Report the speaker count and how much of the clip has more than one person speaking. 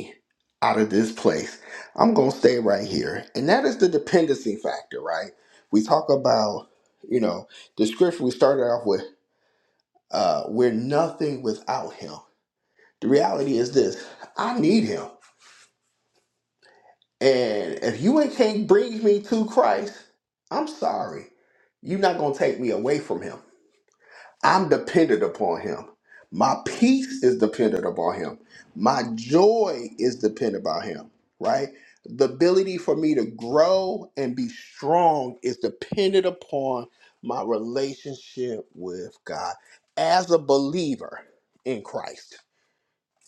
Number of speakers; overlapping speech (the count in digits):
1, no overlap